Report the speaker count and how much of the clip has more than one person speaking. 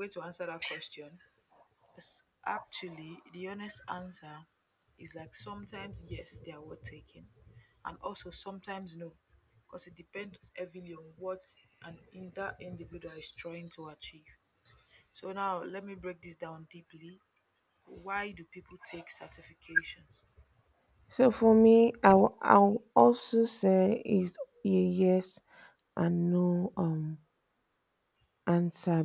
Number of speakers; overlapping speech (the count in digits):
2, no overlap